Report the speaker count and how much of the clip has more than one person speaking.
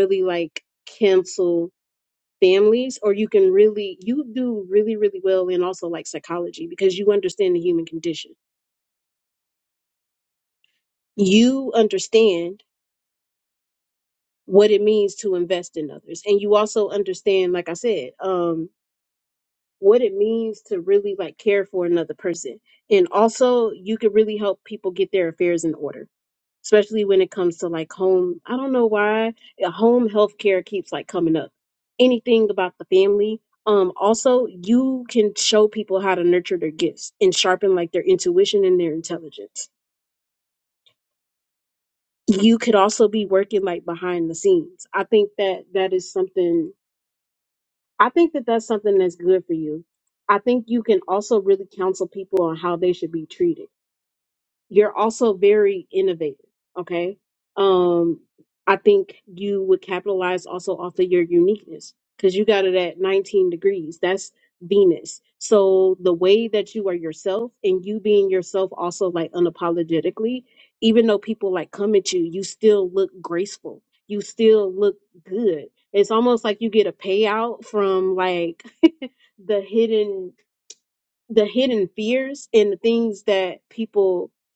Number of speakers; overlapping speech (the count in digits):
1, no overlap